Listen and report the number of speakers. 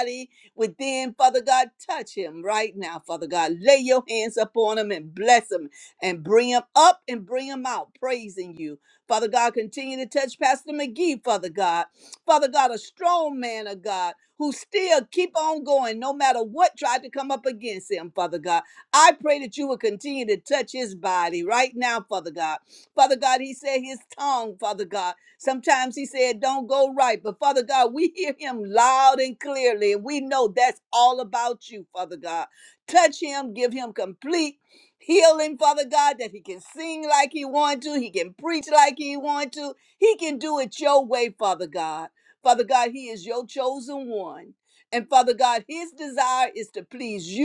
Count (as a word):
one